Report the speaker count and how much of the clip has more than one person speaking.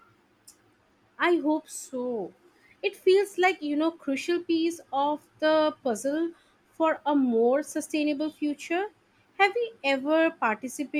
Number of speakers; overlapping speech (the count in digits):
1, no overlap